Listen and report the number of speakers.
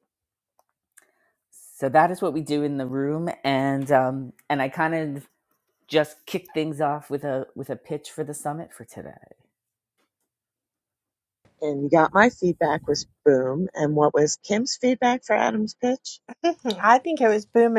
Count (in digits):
3